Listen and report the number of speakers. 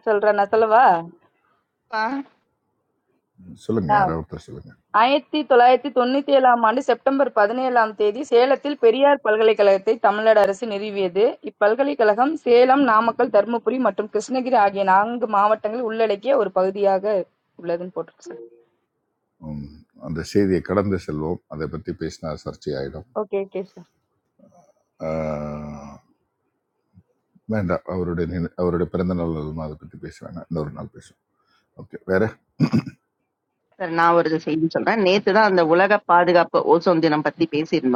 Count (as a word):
three